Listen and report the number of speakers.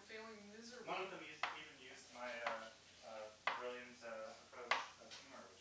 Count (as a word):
two